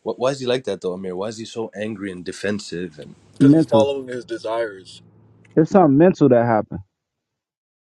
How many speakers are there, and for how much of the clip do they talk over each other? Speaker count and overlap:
three, about 6%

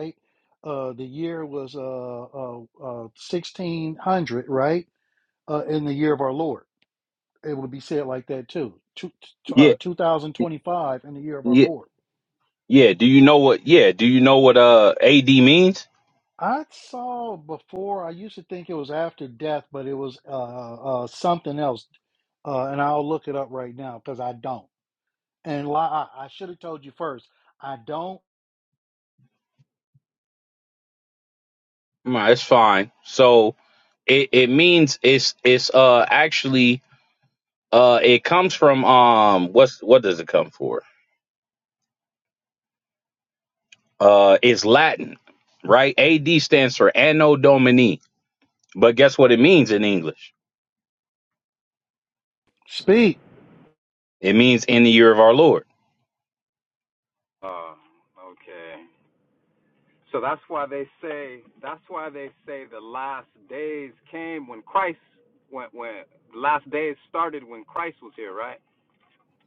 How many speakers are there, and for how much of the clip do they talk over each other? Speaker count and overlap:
three, under 1%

